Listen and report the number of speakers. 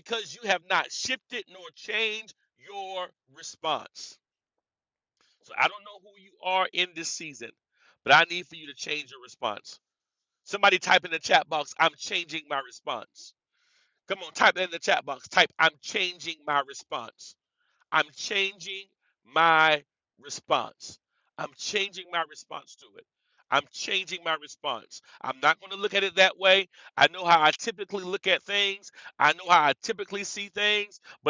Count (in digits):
1